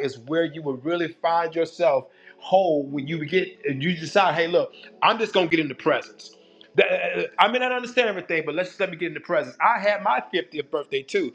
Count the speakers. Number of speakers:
one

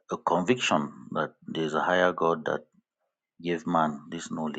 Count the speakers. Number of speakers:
one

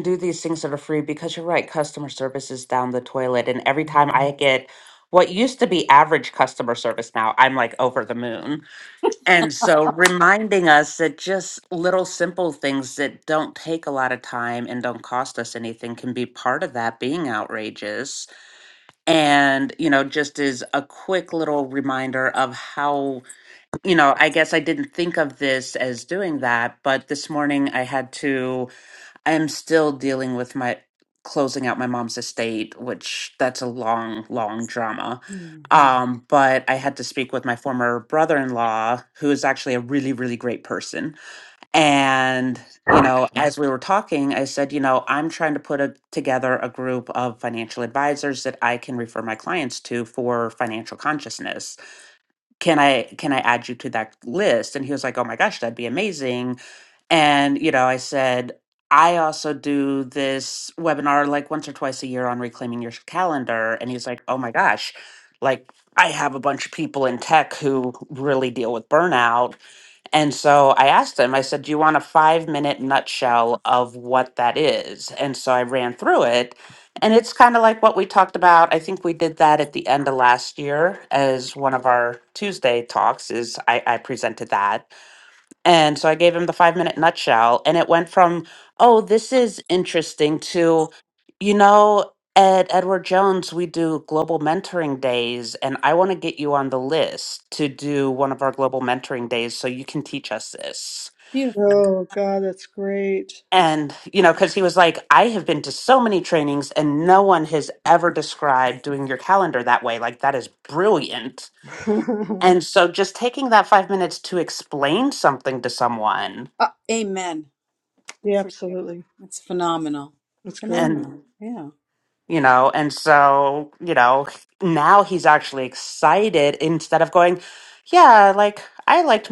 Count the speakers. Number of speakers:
three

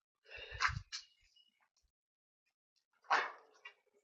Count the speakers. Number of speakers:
zero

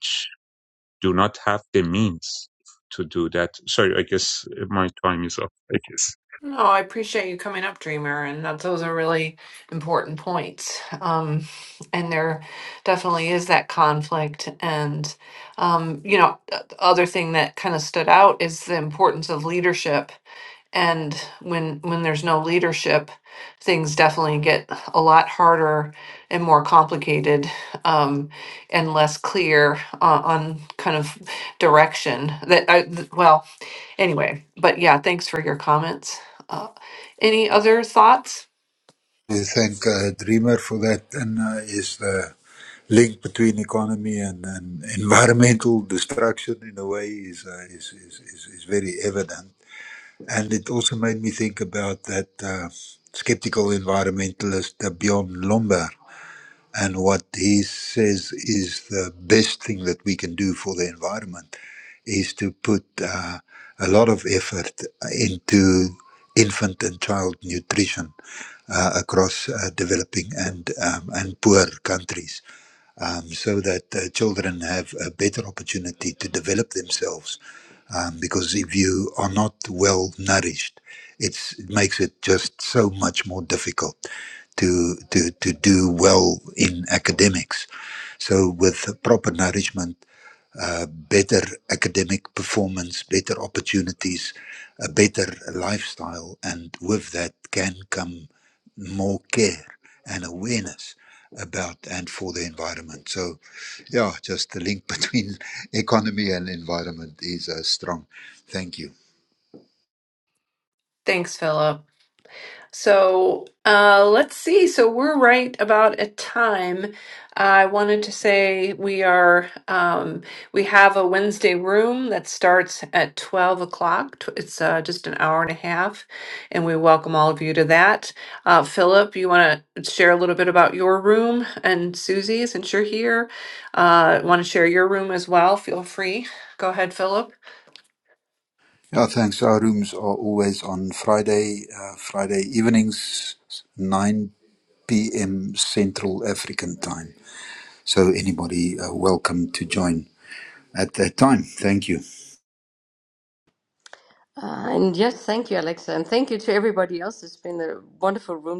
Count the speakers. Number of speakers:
four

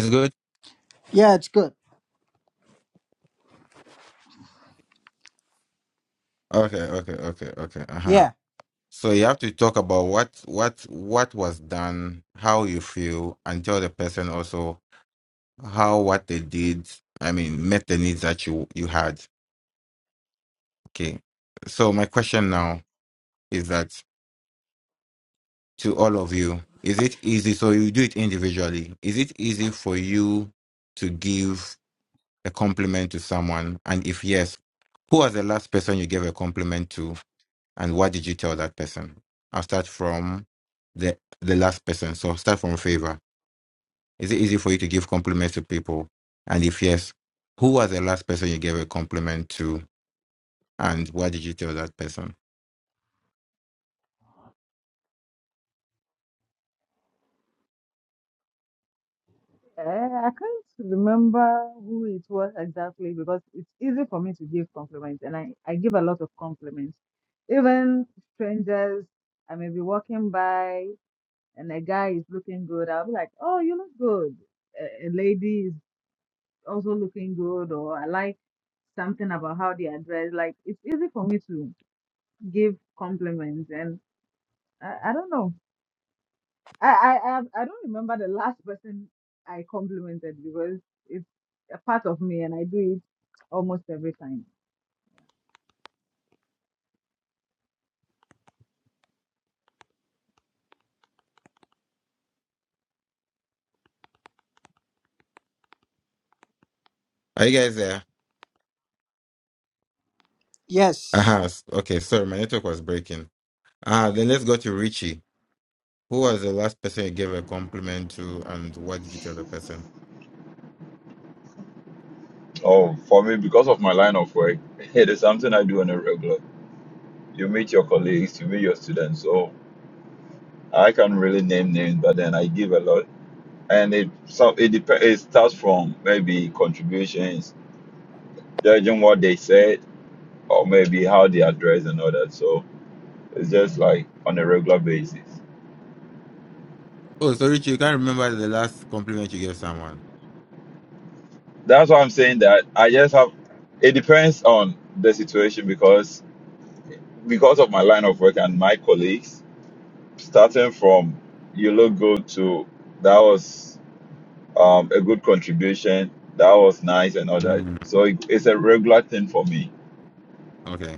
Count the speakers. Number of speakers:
four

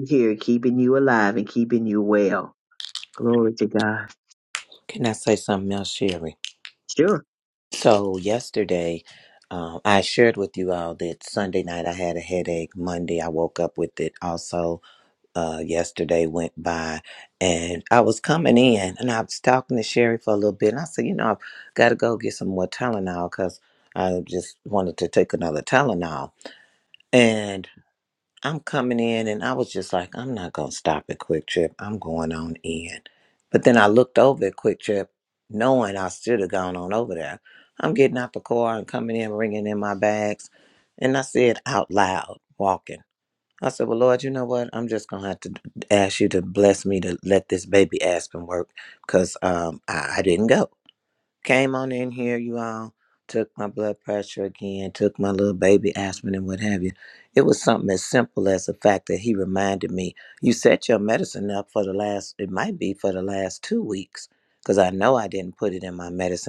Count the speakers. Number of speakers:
two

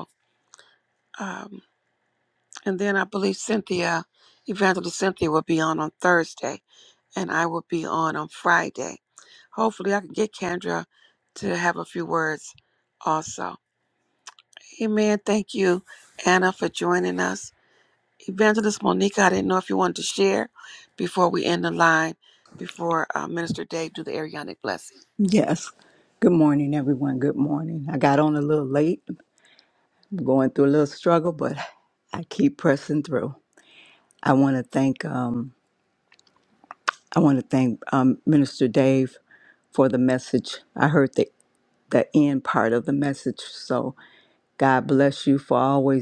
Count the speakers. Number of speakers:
two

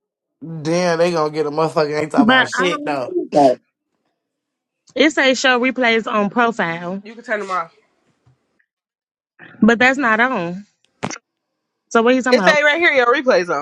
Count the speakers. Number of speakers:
three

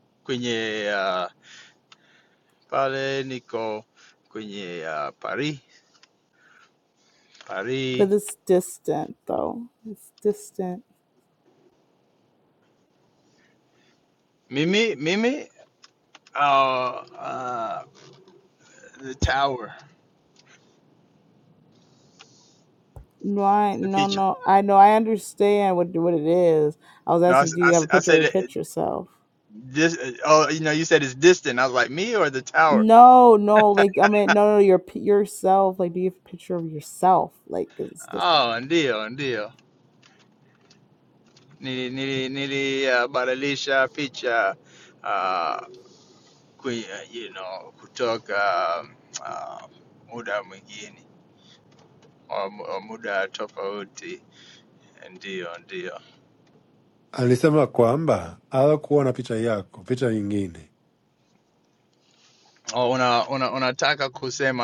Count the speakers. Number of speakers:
three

